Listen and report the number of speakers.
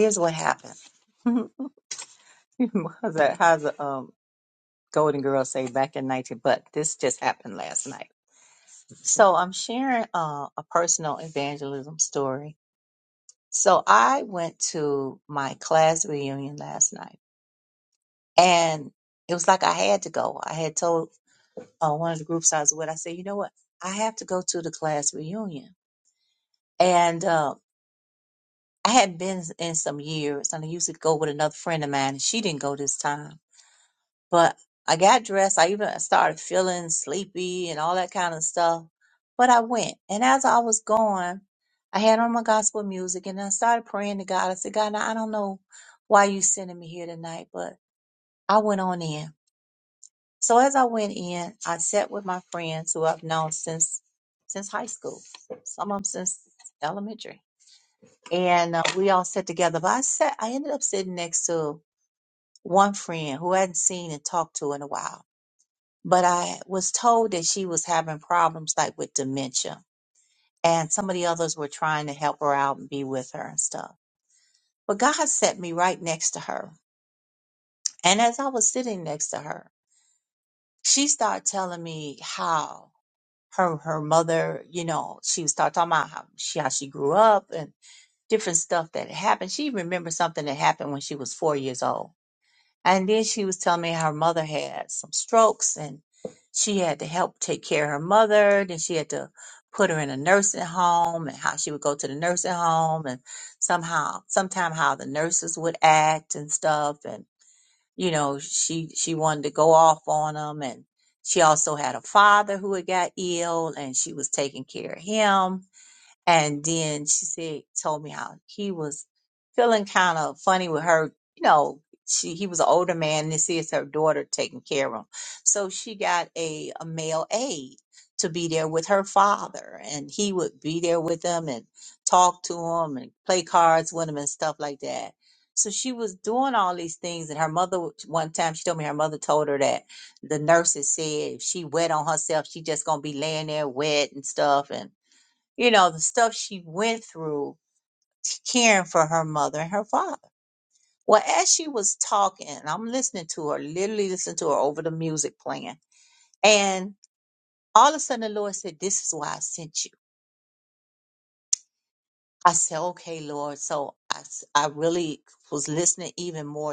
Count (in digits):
1